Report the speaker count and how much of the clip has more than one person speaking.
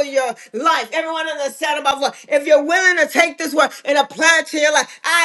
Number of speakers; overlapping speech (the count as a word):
one, no overlap